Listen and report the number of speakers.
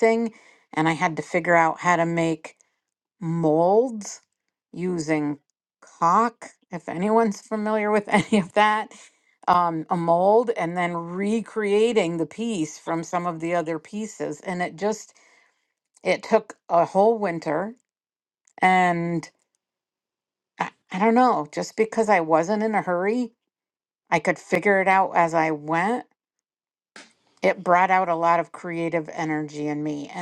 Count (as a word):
one